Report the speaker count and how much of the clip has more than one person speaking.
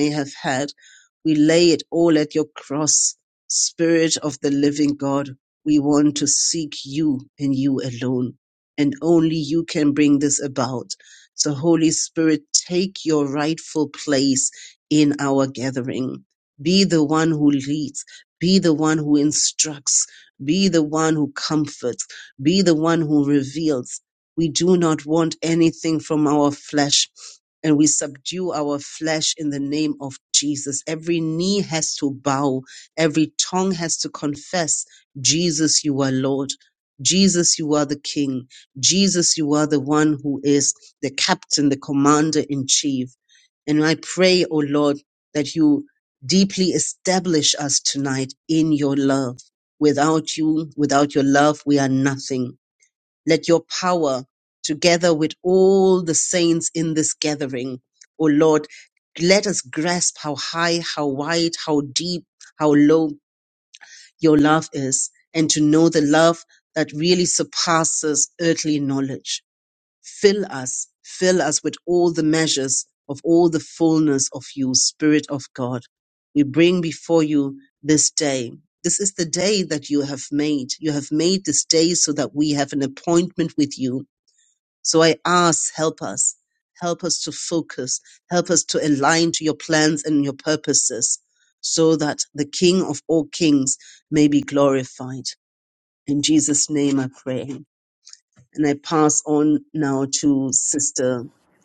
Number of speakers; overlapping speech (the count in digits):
1, no overlap